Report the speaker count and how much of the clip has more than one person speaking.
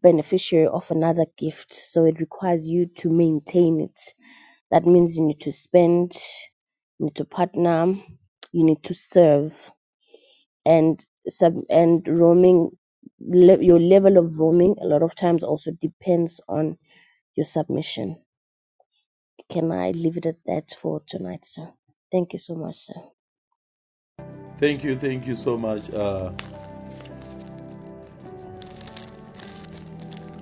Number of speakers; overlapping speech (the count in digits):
2, no overlap